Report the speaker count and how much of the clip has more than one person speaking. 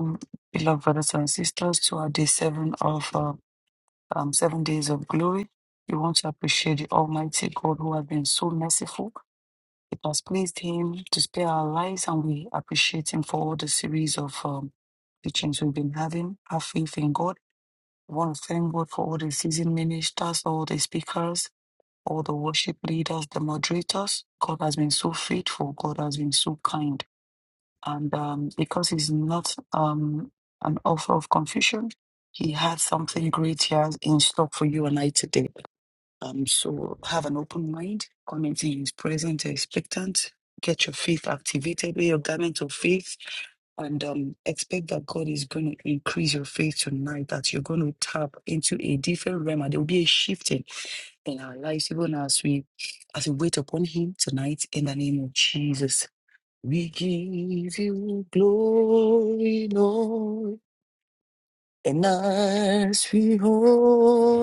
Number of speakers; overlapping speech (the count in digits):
1, no overlap